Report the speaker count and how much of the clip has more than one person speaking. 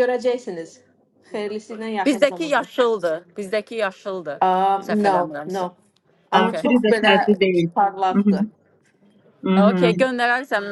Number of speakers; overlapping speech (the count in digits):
3, about 25%